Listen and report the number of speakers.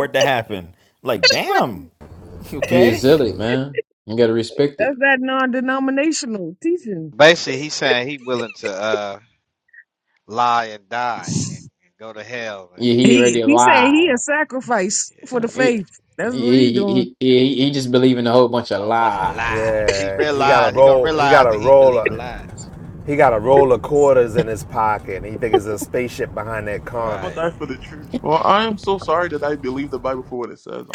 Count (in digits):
6